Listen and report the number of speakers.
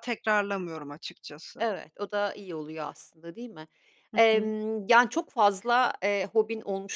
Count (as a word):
two